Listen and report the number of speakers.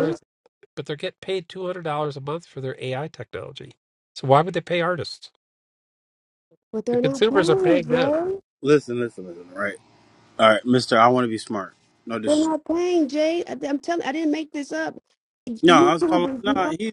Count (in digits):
3